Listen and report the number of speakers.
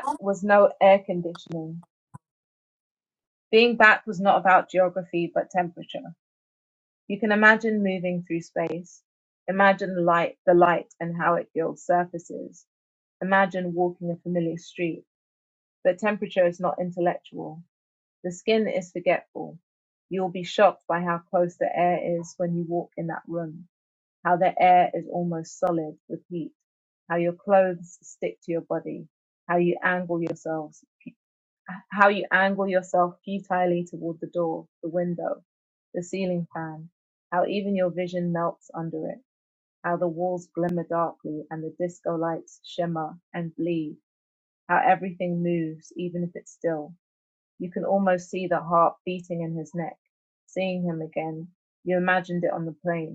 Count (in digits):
1